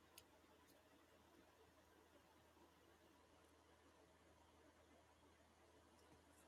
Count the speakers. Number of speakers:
zero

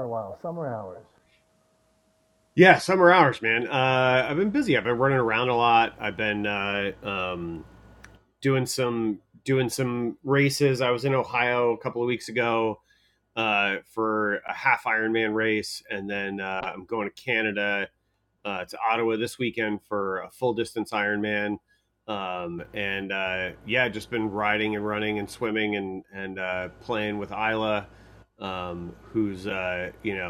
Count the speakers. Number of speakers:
two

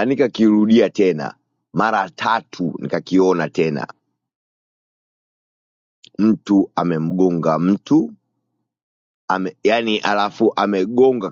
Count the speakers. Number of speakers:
one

